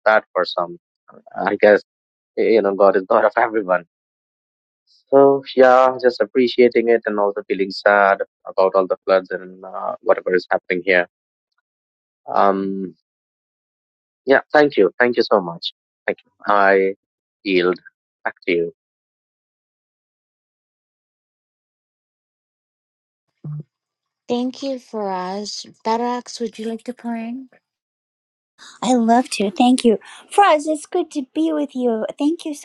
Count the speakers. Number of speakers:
three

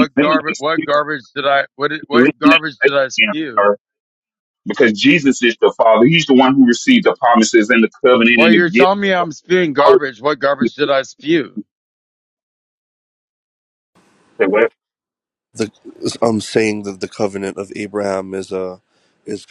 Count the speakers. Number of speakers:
three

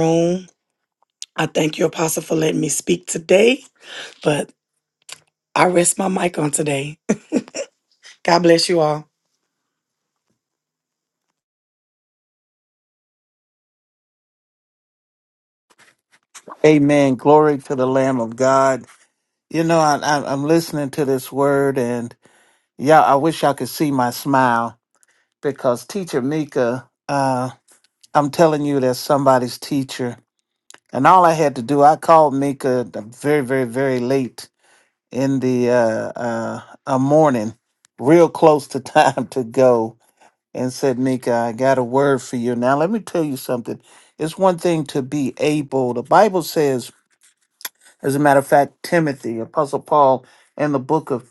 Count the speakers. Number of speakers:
two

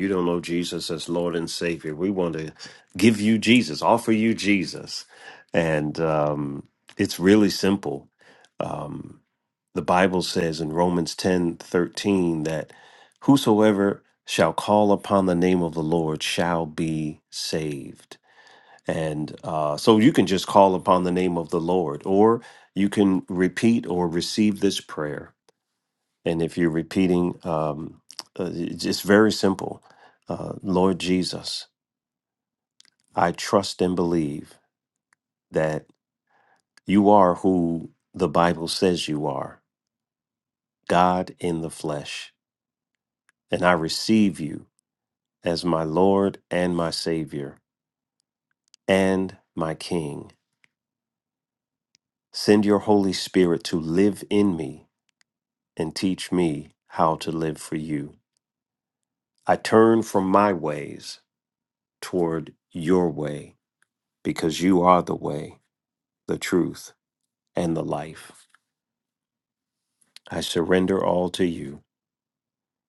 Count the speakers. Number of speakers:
one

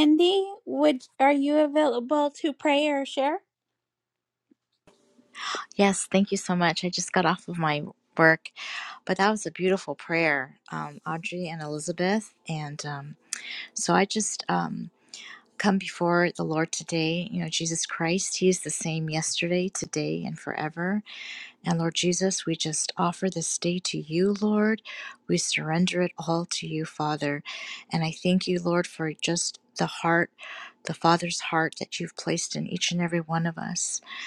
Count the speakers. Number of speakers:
two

